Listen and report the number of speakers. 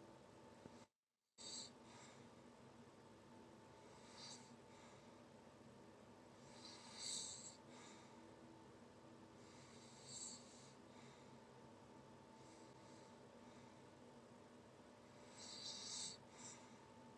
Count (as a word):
zero